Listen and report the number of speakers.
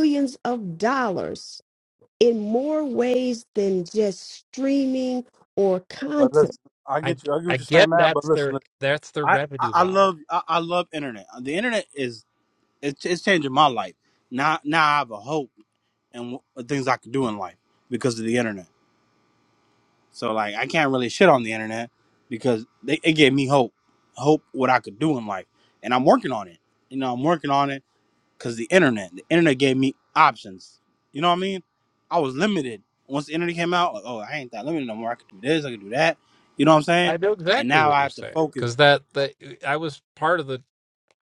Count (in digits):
3